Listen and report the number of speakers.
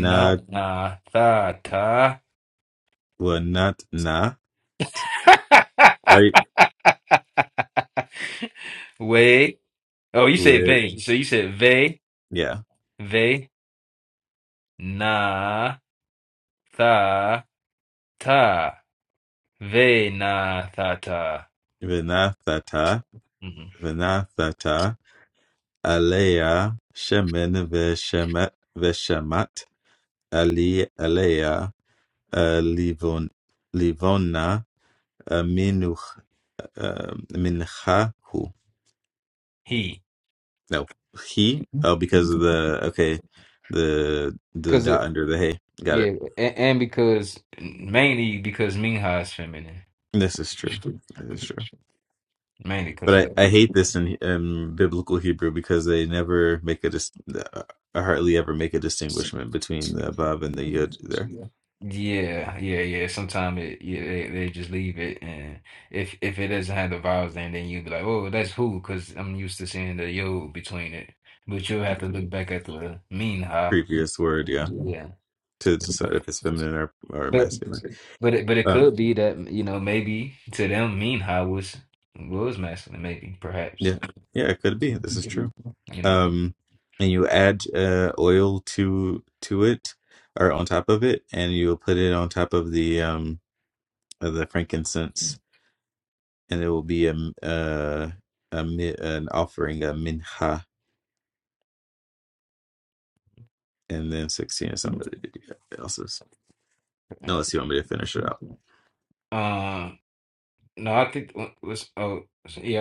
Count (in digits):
2